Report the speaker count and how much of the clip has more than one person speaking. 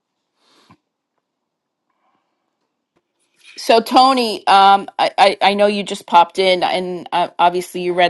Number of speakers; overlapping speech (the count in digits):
1, no overlap